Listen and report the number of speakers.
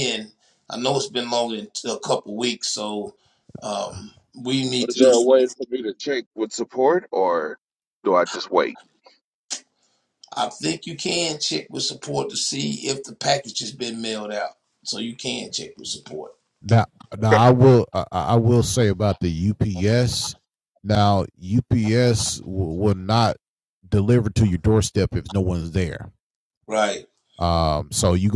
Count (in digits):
3